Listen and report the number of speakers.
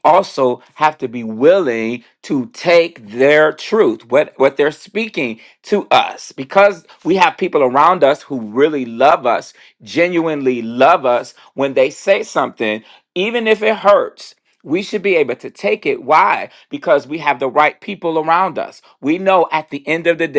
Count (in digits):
1